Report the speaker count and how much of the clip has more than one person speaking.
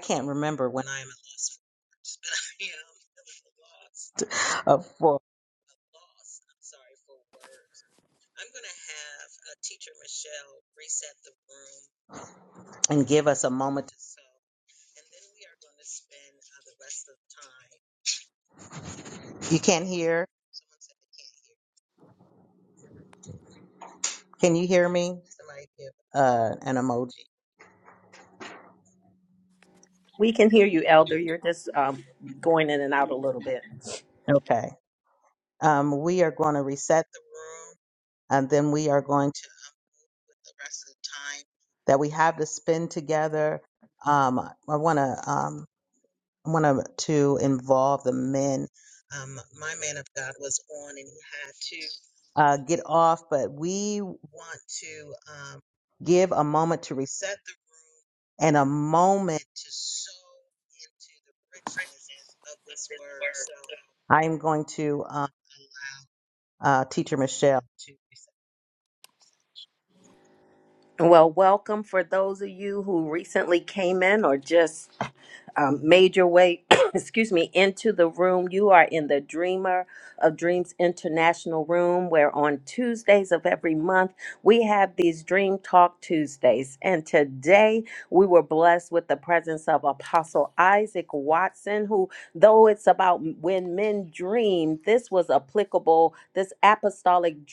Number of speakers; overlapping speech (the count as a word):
two, no overlap